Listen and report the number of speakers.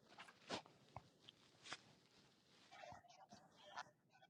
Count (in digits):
0